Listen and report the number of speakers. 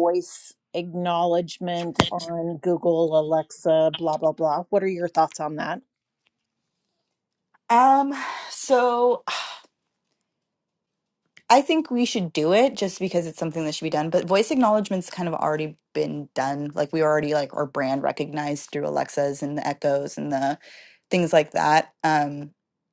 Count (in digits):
2